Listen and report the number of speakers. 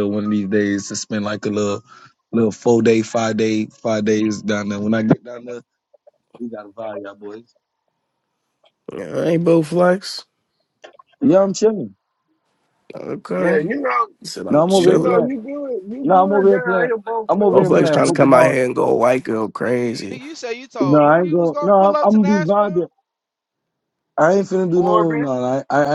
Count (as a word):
four